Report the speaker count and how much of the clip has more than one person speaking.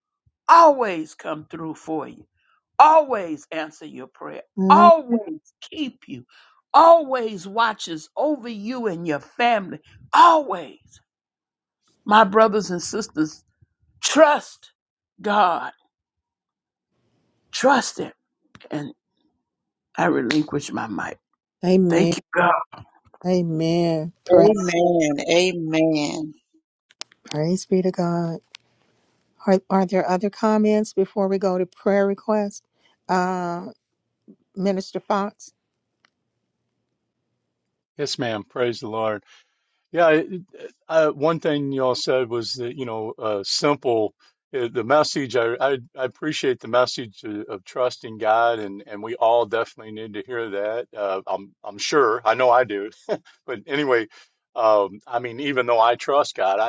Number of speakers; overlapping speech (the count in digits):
4, about 1%